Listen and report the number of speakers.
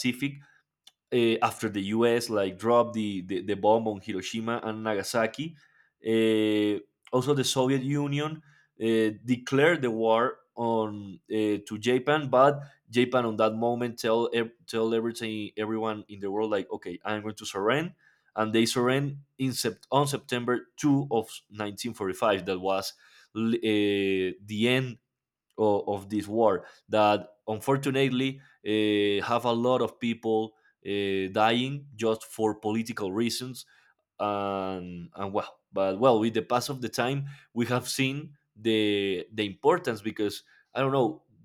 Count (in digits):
1